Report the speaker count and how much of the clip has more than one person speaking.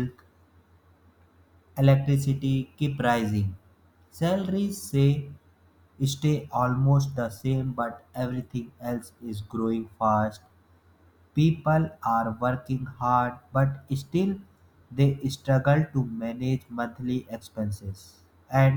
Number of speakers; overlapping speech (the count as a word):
one, no overlap